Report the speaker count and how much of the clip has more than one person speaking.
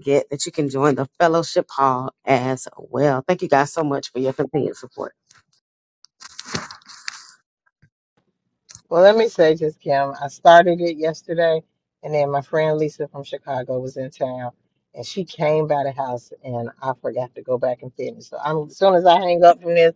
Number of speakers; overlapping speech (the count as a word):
two, no overlap